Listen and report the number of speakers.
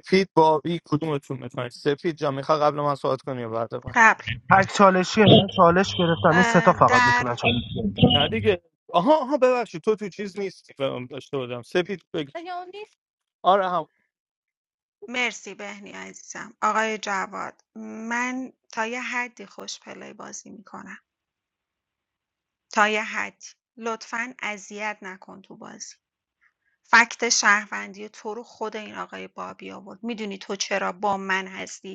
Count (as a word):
three